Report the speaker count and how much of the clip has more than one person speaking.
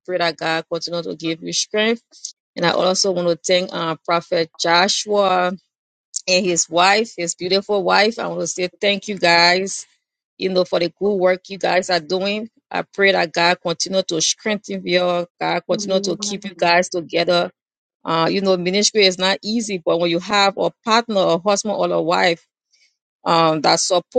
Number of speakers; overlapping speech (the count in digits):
1, no overlap